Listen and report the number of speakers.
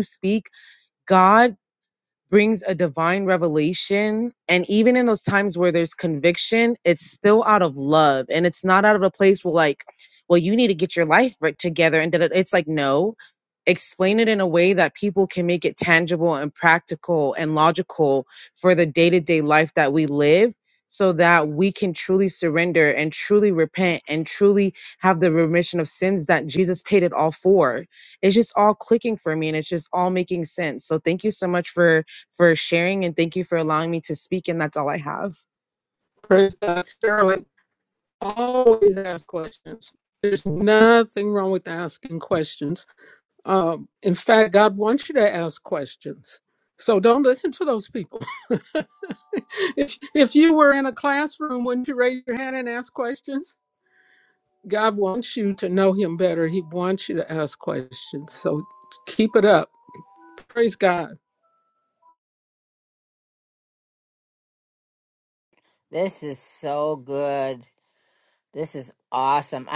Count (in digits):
3